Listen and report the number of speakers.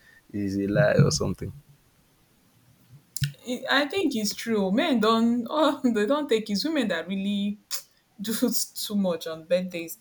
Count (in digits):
2